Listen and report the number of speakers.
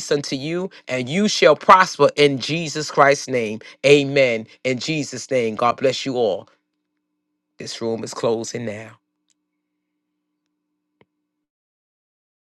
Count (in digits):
1